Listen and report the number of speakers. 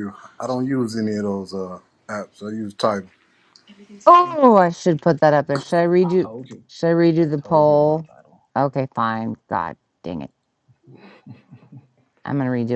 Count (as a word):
three